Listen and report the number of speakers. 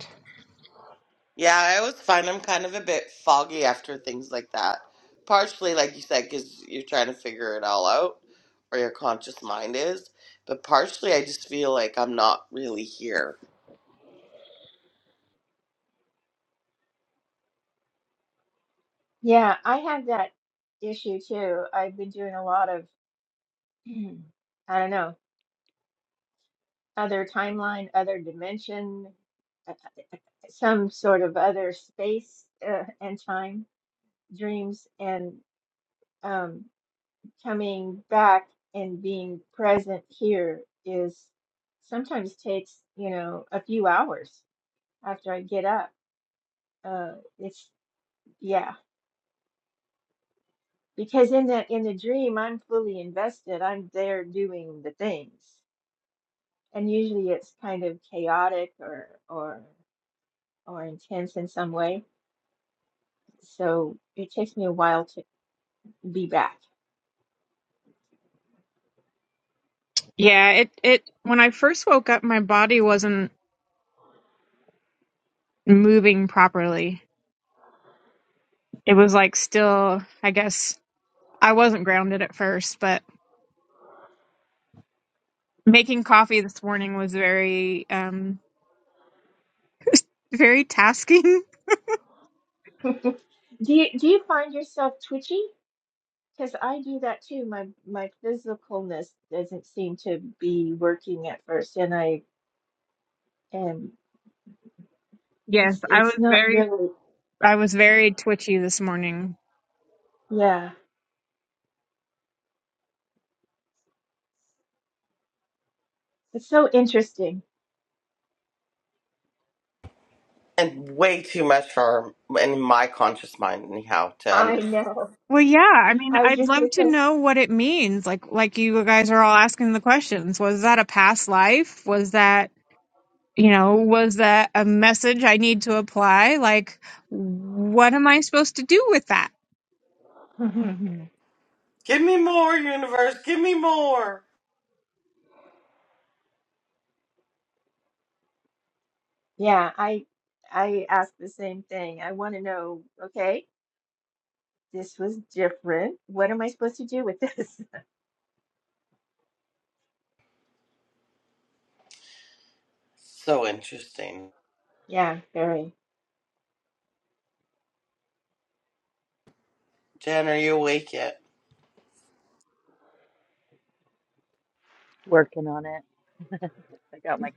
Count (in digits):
4